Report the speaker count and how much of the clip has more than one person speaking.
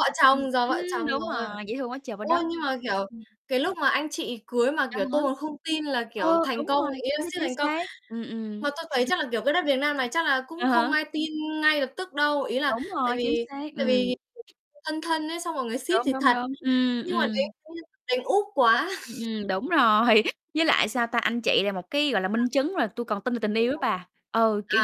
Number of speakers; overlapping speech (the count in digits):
2, about 26%